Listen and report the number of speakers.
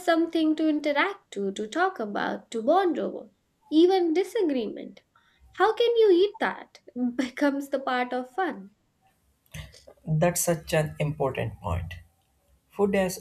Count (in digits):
2